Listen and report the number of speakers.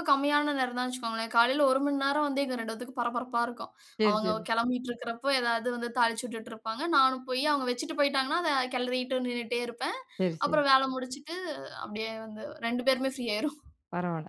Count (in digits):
2